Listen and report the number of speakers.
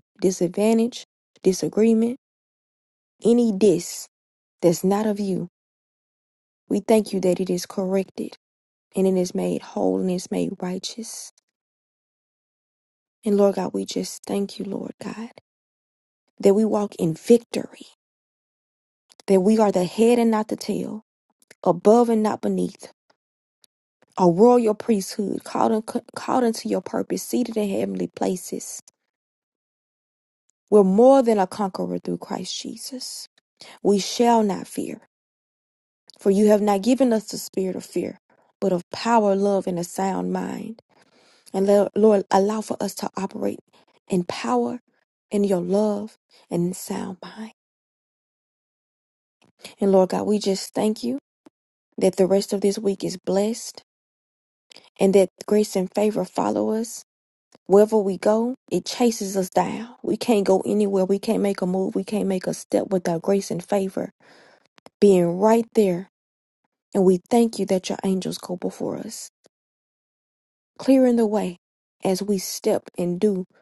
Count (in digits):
1